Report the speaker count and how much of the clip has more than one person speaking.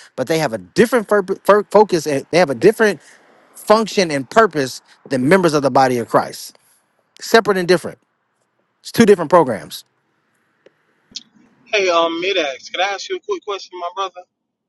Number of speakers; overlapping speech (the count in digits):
2, no overlap